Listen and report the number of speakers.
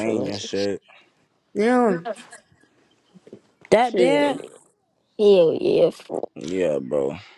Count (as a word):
three